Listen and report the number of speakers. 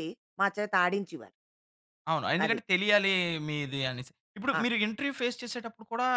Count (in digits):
2